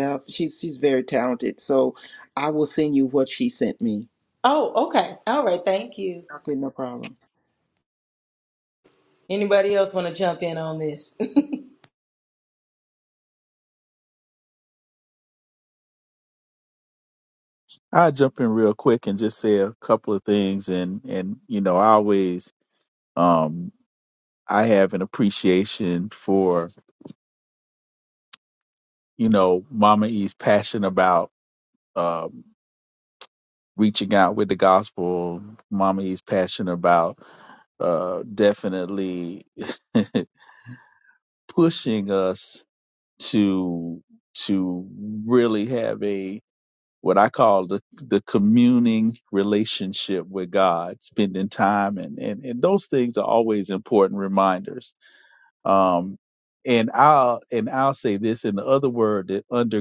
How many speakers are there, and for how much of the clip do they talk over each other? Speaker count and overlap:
3, no overlap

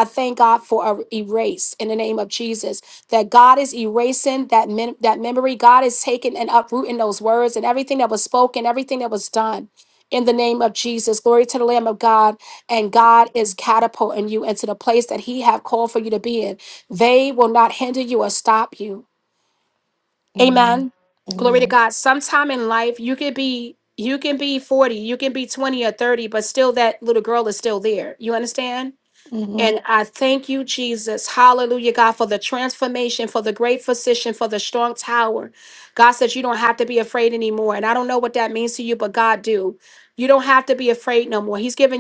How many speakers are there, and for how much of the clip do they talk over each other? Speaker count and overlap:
2, about 2%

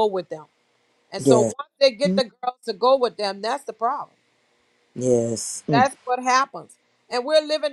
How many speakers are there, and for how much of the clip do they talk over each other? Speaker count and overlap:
2, about 9%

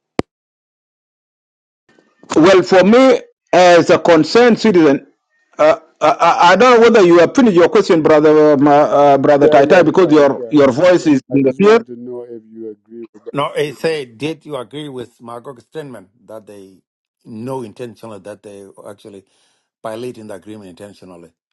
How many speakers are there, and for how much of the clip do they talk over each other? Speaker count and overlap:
3, about 11%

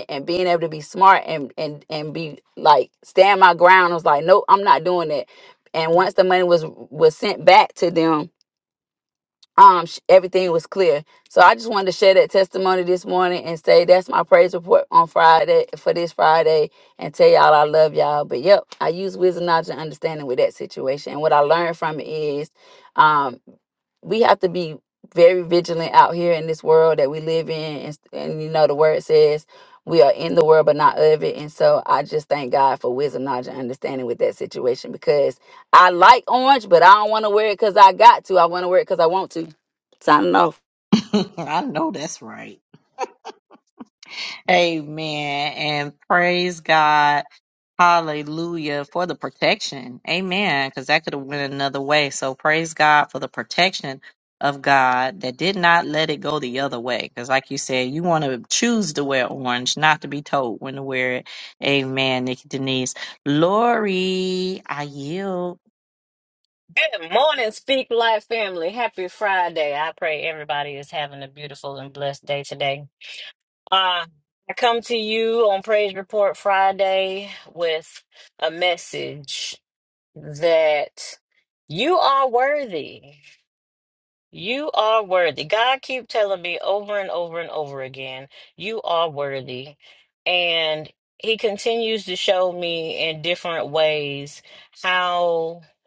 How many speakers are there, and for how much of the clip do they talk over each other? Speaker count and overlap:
3, no overlap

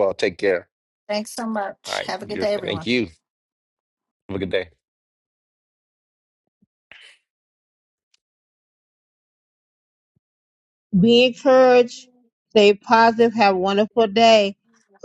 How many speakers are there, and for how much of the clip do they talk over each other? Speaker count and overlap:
3, about 6%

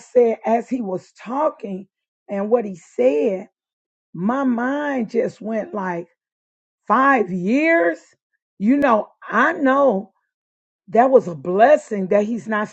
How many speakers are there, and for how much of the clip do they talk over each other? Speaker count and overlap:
1, no overlap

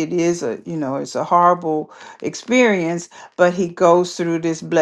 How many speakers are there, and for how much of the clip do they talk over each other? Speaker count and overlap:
1, no overlap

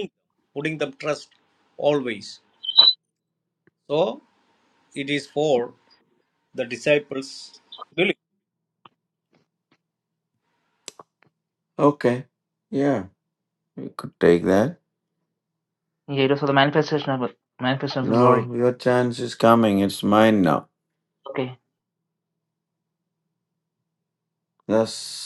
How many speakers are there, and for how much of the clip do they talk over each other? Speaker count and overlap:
3, about 2%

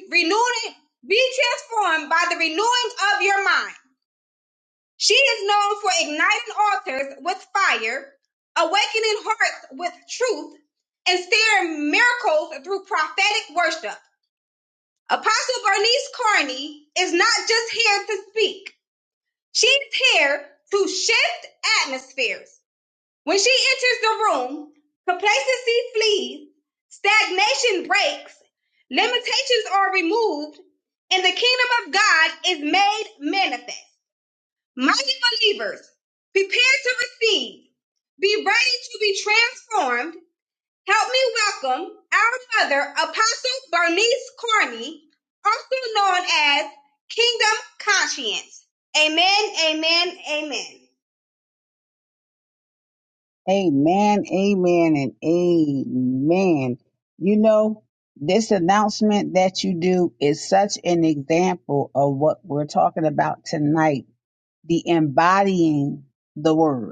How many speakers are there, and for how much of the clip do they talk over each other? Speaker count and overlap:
2, no overlap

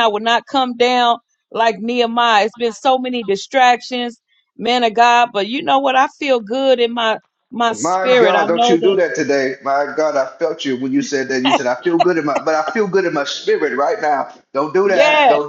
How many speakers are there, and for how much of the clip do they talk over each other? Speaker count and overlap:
2, about 12%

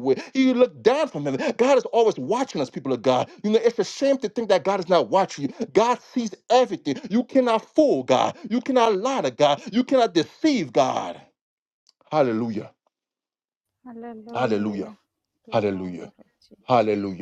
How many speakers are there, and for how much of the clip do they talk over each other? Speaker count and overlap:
2, about 8%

